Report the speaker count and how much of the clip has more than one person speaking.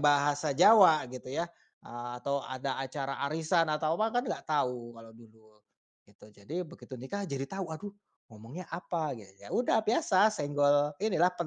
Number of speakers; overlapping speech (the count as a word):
one, no overlap